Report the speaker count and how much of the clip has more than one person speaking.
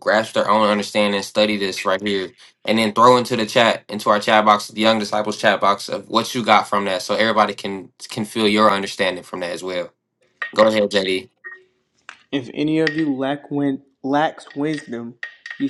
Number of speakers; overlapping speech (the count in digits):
2, no overlap